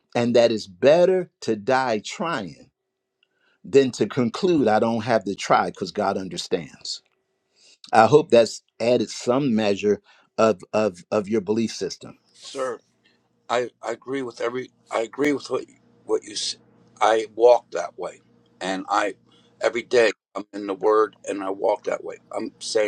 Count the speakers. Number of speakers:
two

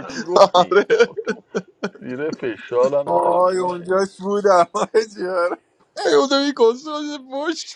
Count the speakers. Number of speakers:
three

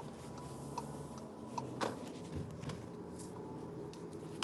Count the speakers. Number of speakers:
zero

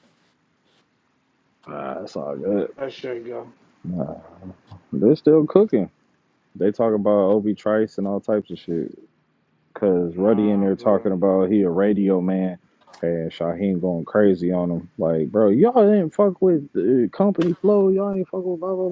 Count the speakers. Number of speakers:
two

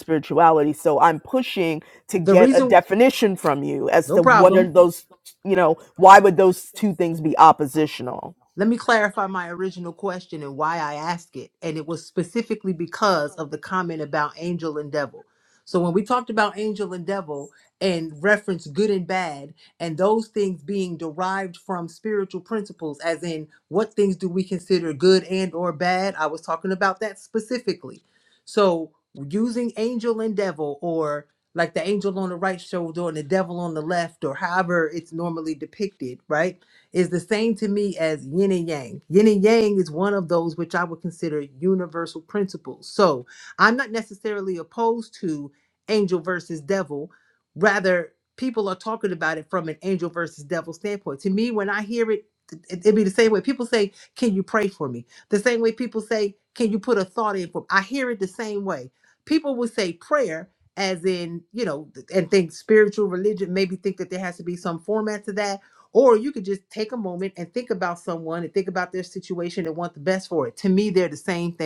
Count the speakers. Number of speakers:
two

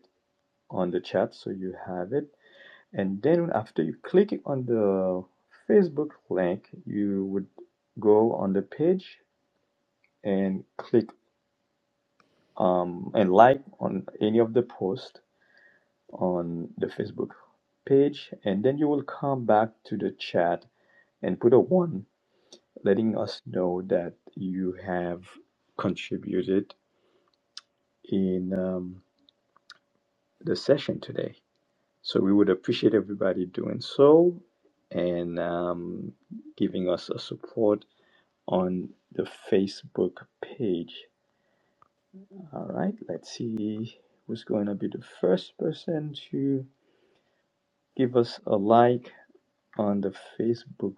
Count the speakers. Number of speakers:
one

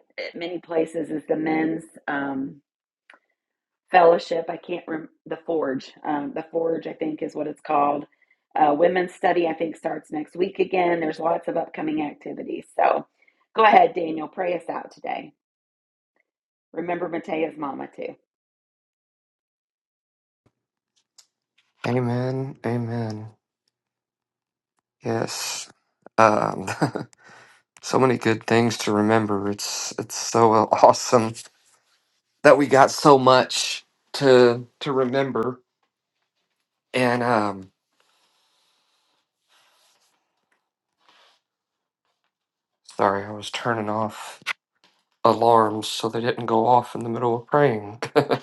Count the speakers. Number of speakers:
two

